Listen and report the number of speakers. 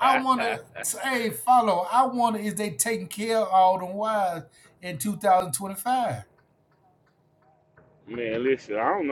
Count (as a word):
two